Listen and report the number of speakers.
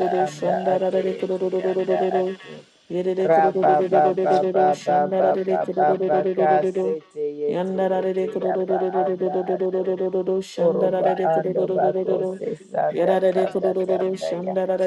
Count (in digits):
2